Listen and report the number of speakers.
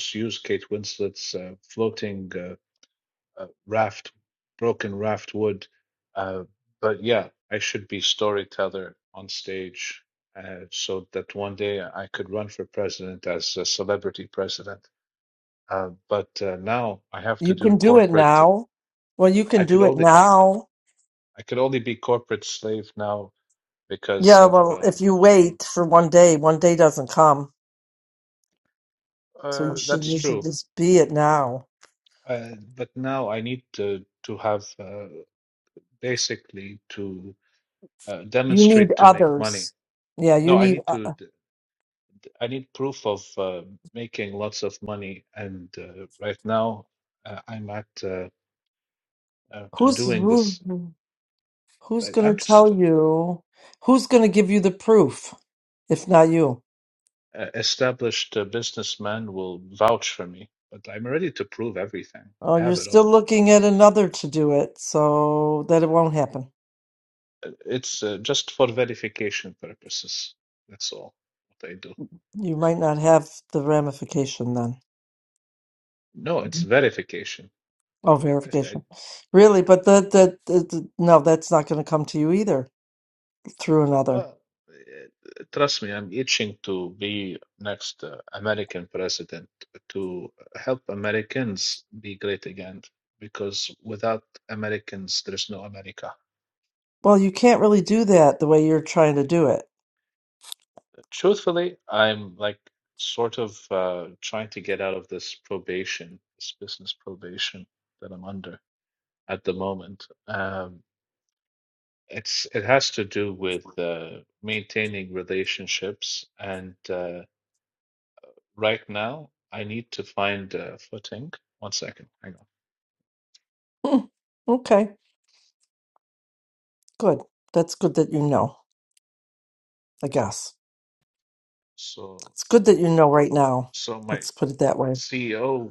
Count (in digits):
2